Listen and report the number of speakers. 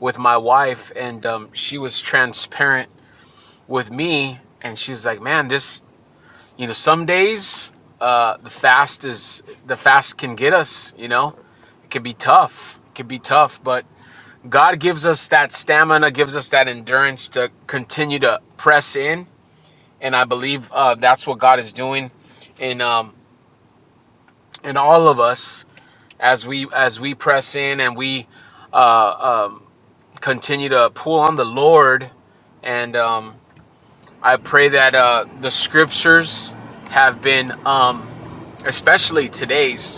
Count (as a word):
one